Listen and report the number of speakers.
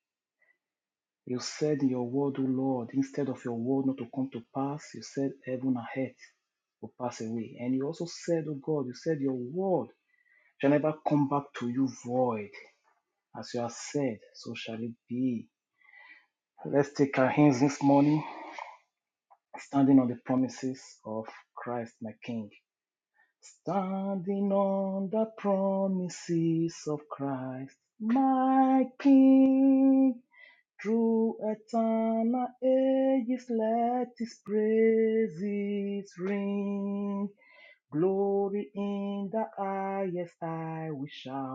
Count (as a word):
one